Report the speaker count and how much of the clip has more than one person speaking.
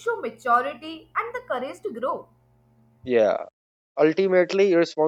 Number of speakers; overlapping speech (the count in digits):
2, no overlap